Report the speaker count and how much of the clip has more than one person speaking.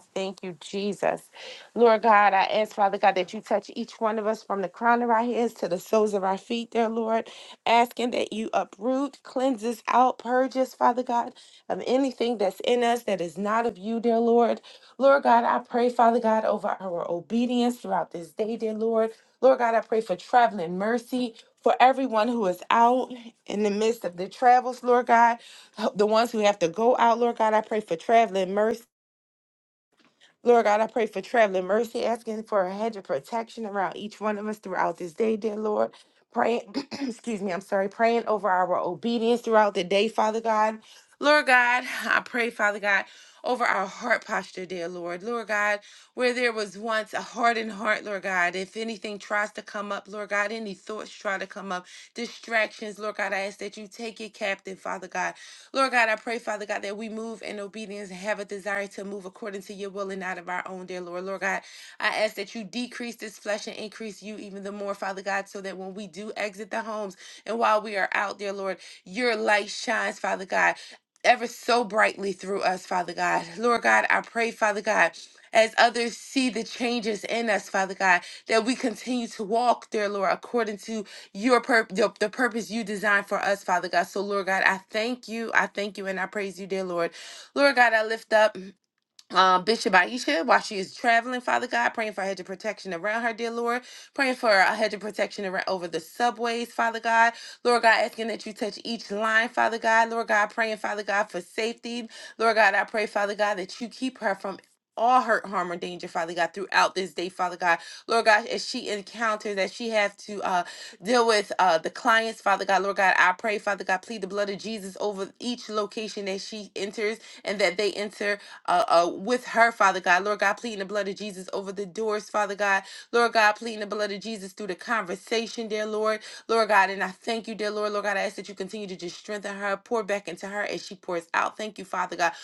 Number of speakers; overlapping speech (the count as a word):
one, no overlap